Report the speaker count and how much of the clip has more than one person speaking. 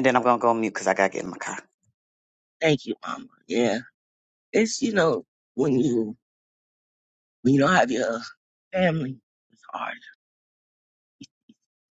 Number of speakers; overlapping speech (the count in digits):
2, no overlap